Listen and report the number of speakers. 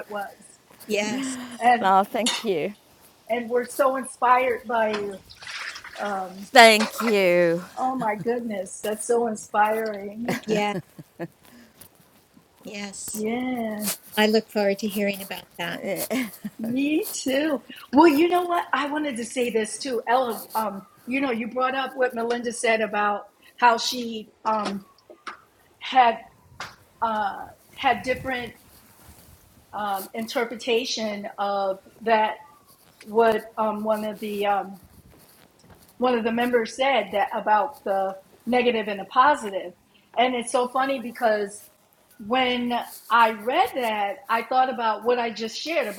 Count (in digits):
3